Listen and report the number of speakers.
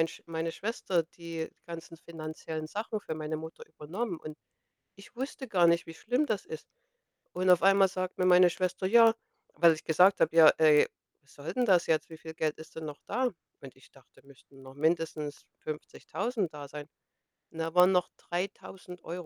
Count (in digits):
1